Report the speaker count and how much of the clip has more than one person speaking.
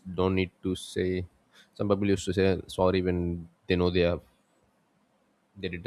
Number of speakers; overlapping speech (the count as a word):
one, no overlap